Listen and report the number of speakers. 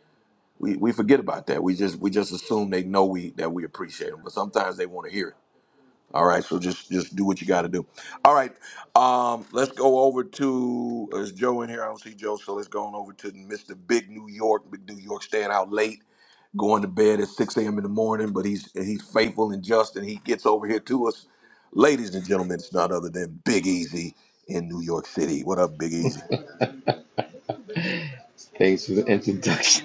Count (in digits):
2